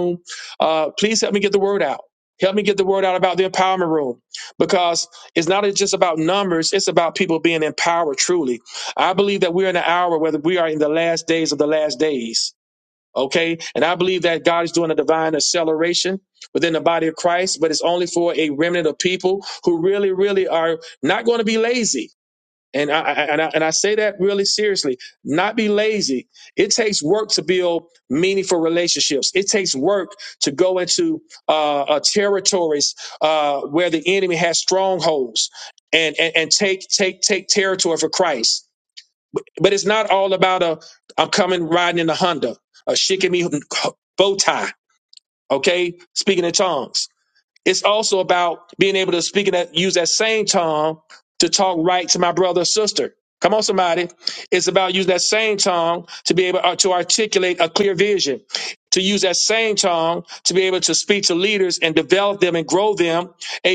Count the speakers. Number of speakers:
1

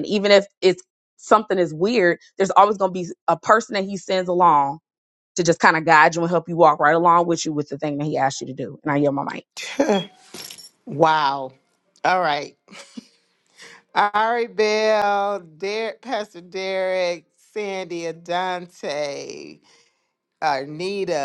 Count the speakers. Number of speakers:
2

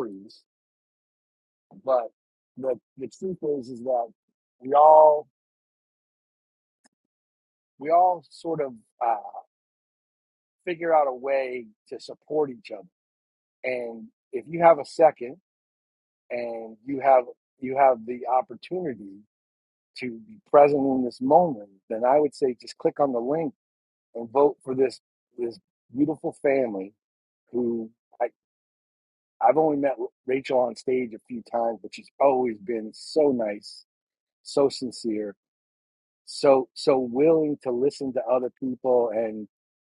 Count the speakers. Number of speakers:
1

